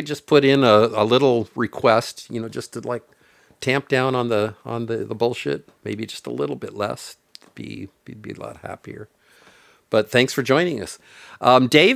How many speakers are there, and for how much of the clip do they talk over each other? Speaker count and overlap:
one, no overlap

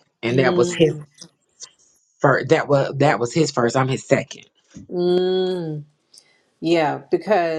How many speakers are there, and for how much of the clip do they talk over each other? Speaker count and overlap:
two, about 9%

